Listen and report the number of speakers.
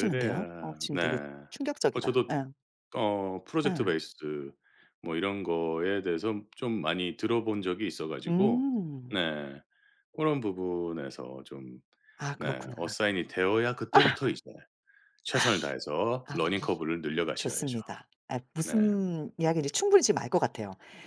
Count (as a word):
two